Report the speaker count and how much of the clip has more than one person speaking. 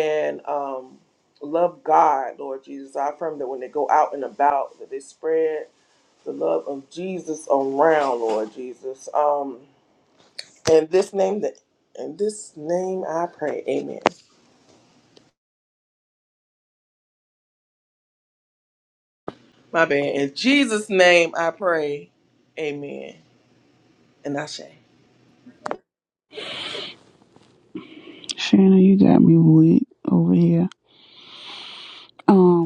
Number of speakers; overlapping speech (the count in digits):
2, no overlap